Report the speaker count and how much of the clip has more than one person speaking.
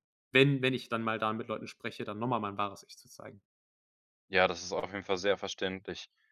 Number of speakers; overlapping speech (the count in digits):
2, no overlap